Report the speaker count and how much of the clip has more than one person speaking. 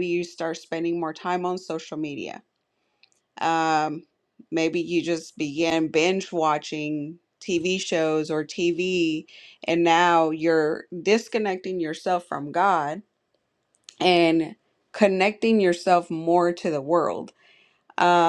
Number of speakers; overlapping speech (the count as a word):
one, no overlap